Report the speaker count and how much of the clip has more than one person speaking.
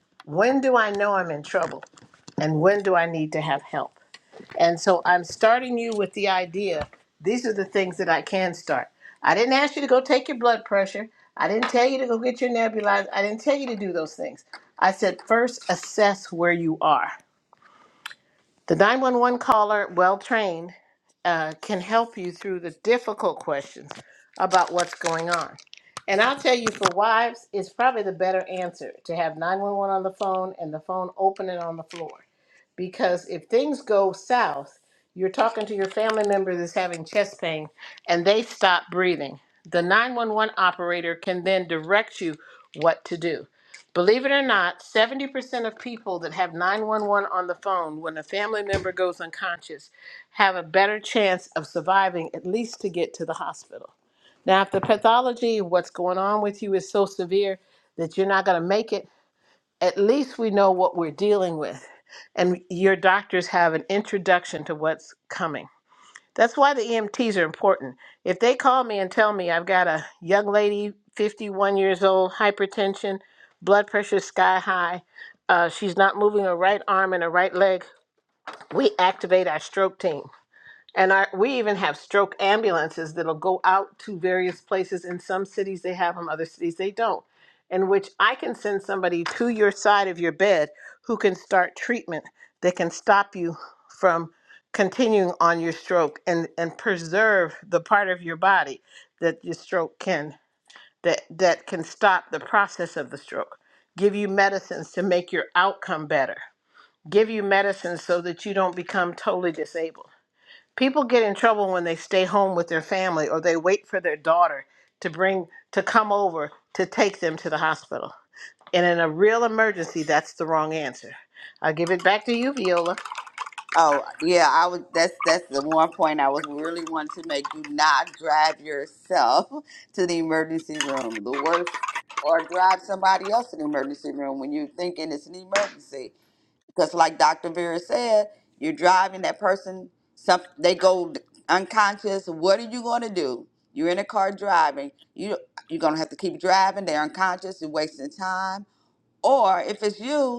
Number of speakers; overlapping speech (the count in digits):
2, no overlap